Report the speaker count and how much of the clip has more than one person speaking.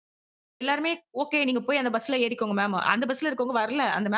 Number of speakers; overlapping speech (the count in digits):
1, no overlap